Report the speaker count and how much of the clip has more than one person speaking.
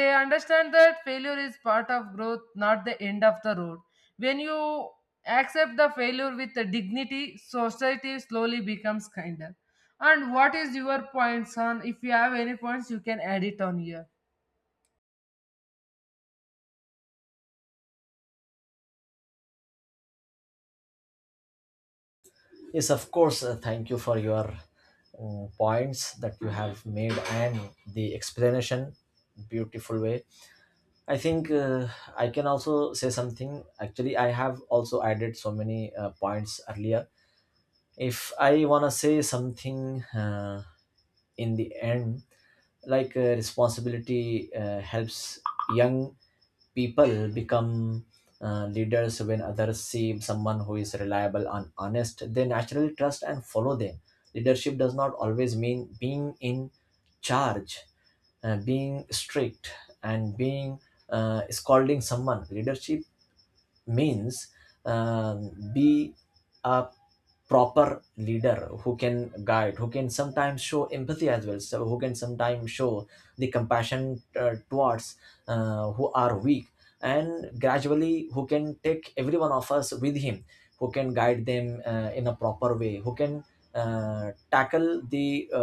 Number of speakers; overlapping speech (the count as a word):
two, no overlap